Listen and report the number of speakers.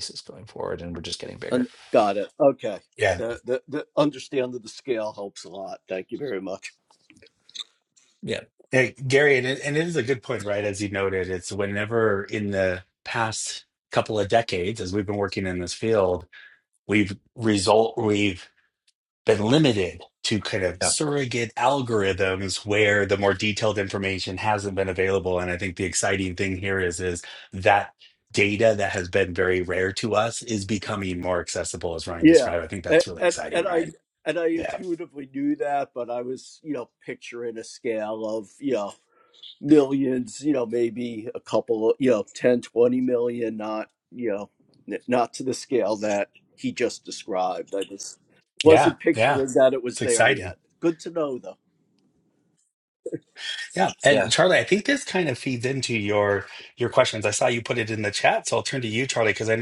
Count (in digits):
3